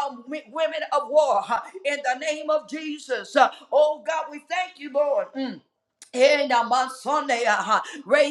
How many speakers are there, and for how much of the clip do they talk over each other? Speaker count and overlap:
1, no overlap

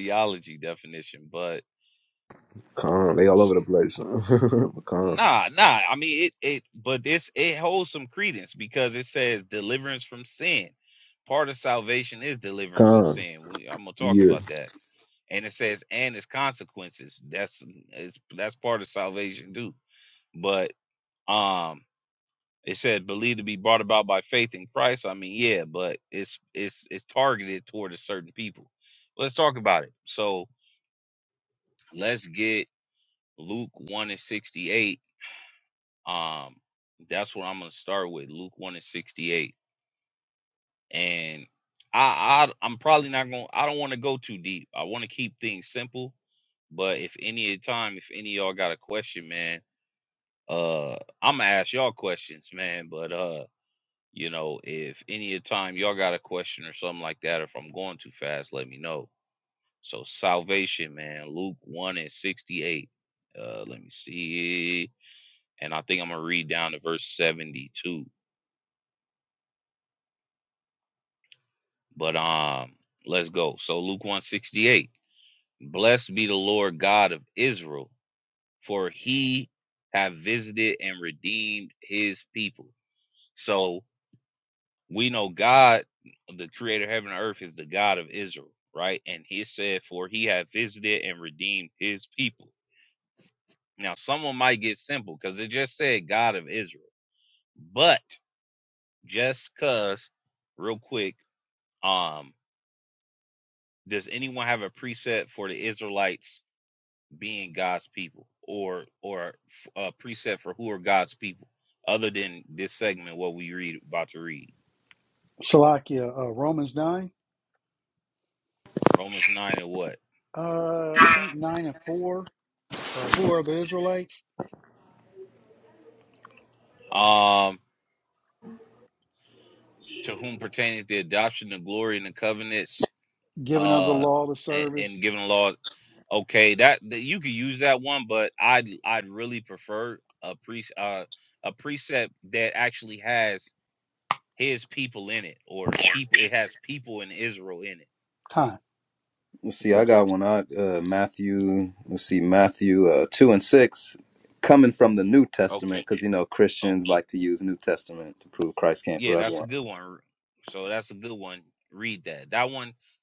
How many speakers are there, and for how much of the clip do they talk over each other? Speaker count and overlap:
4, about 2%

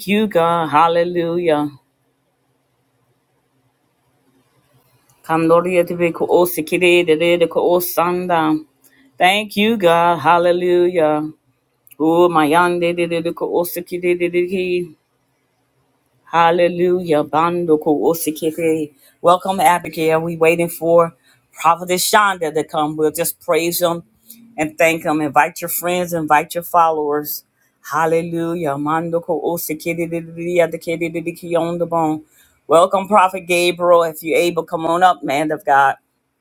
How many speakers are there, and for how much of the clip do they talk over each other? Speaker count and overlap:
1, no overlap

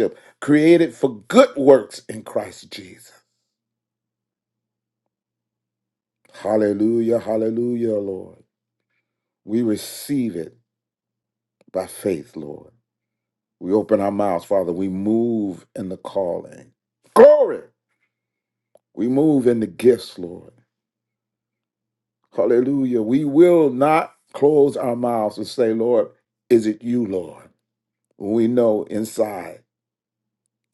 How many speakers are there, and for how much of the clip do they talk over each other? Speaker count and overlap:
1, no overlap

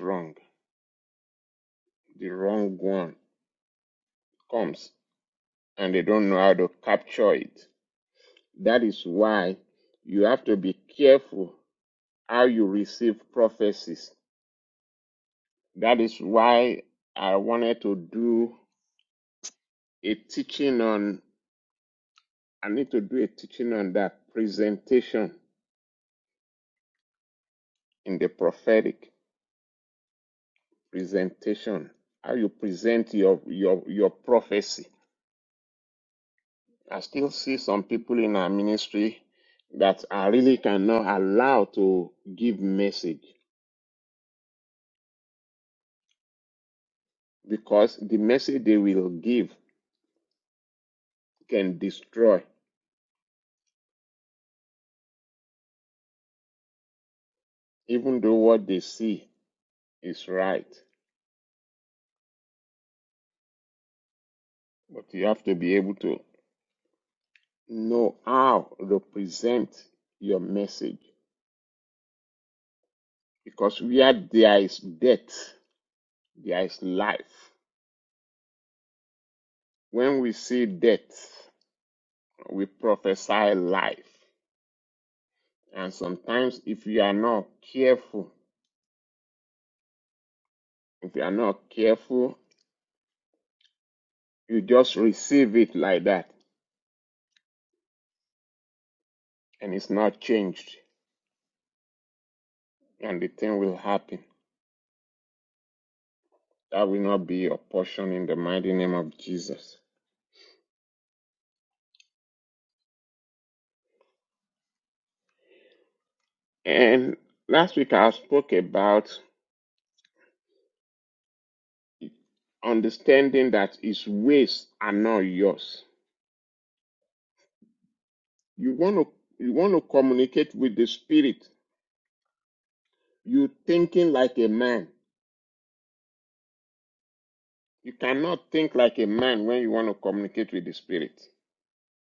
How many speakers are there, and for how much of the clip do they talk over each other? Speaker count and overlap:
1, no overlap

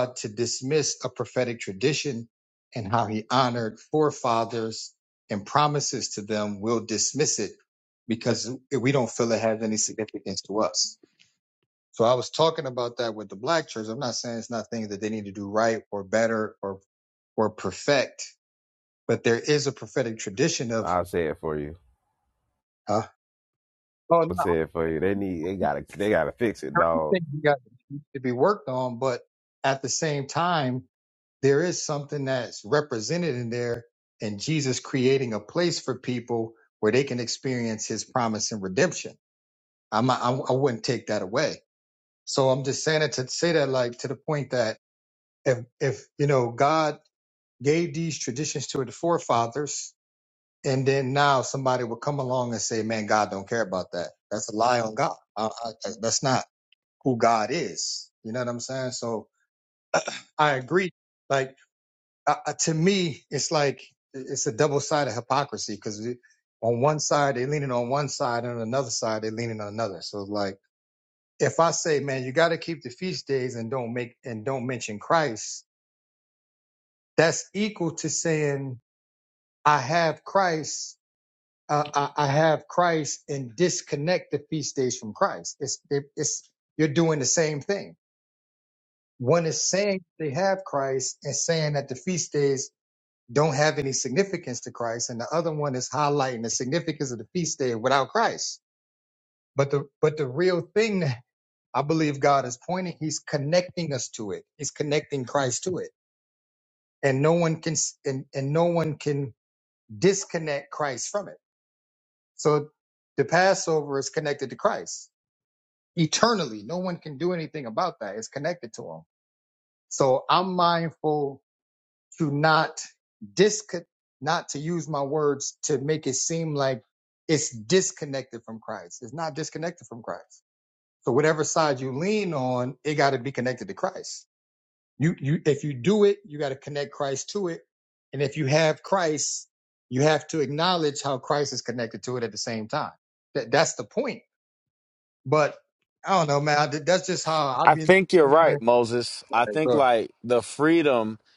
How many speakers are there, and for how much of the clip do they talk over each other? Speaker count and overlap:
3, about 1%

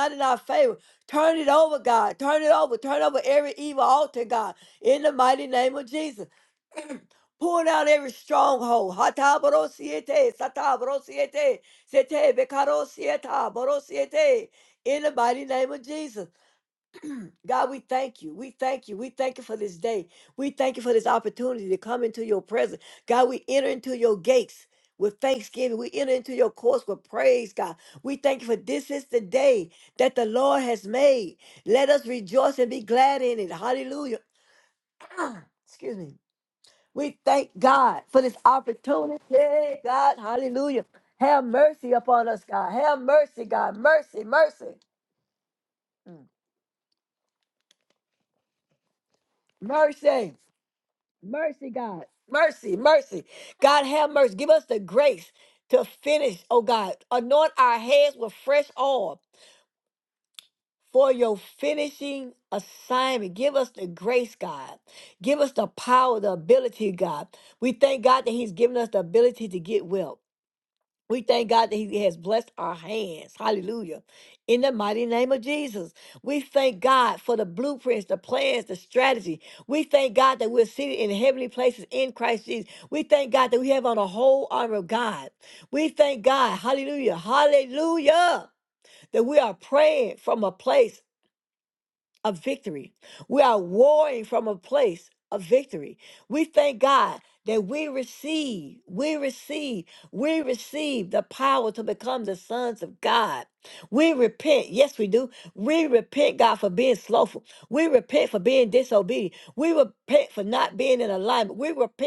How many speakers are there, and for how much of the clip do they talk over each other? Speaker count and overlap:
1, no overlap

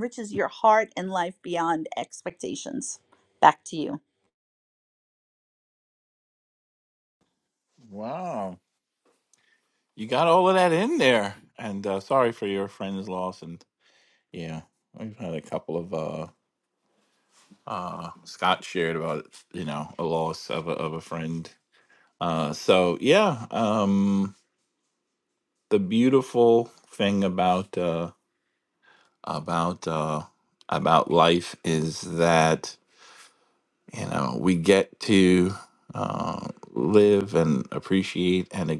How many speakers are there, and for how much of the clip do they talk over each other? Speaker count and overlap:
2, no overlap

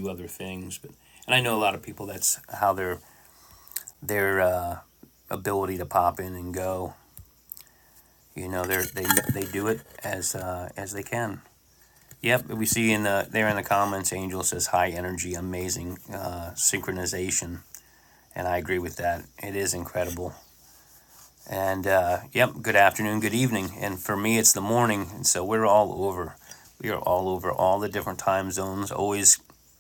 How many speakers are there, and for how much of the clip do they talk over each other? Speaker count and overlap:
1, no overlap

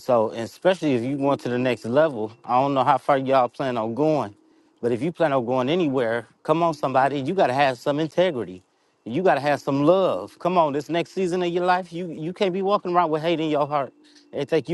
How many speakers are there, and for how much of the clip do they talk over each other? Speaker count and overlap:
1, no overlap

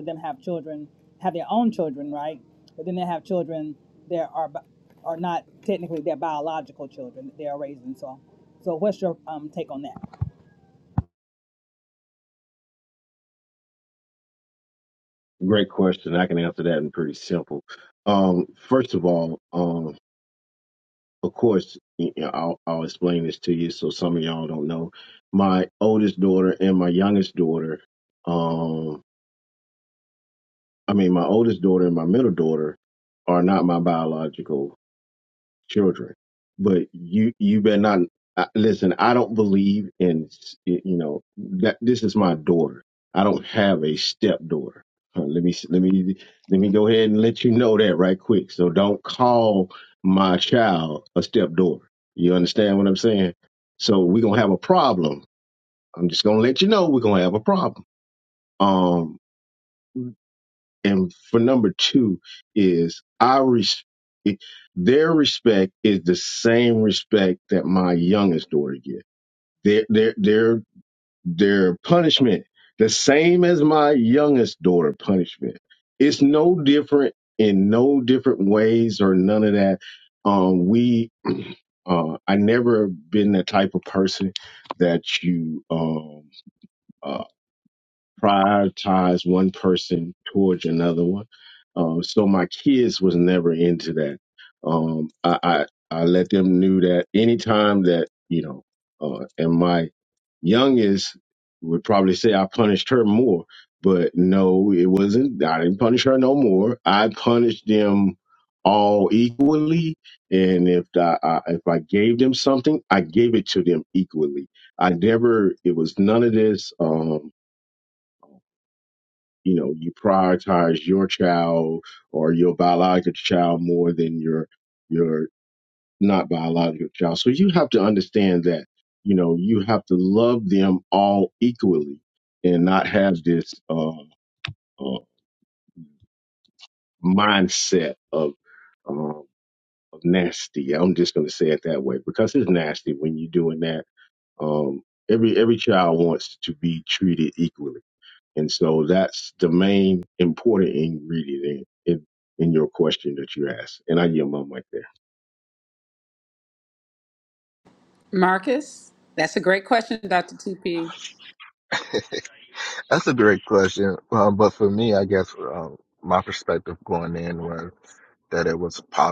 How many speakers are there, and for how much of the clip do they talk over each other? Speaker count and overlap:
4, no overlap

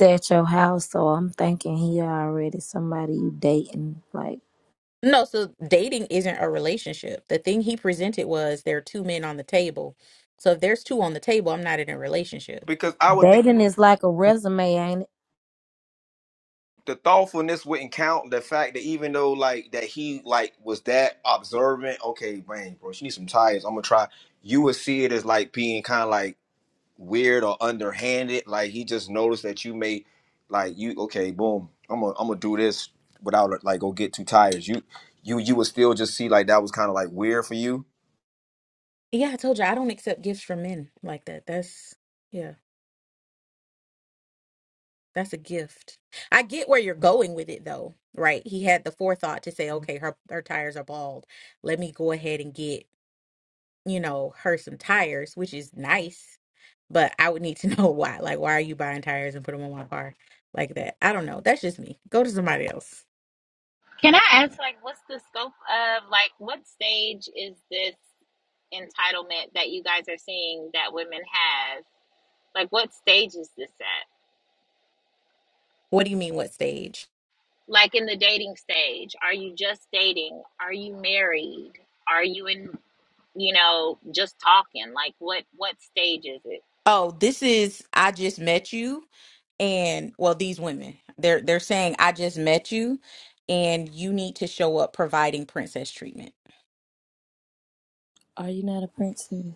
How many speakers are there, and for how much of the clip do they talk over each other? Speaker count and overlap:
4, under 1%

